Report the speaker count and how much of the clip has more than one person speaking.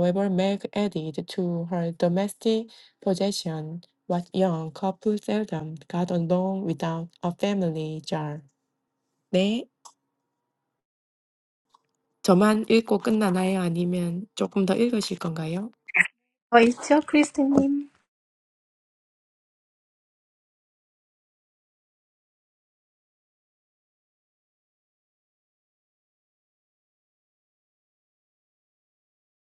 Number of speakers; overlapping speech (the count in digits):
2, no overlap